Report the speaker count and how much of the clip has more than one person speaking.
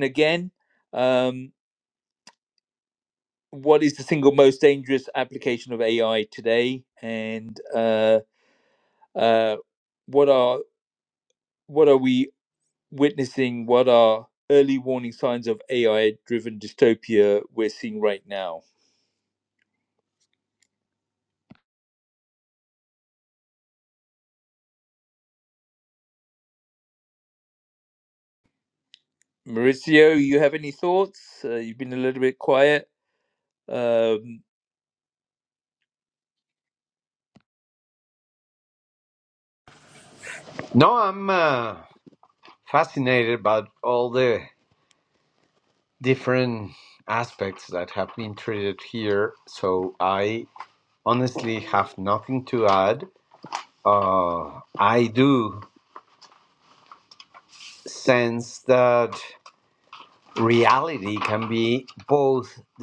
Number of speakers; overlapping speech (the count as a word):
two, no overlap